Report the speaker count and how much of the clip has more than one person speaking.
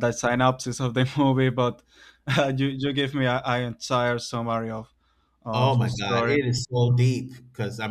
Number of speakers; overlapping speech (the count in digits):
2, about 11%